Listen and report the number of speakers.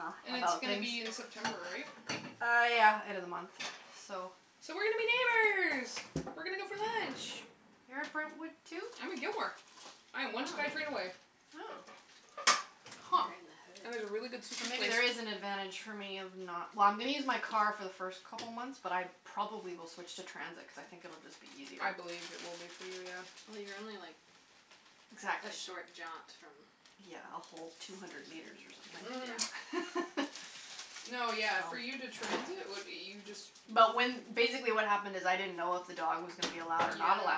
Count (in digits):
3